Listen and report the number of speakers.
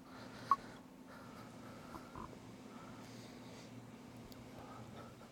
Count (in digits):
0